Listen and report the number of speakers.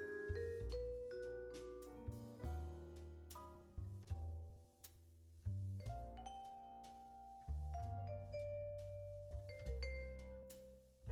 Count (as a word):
zero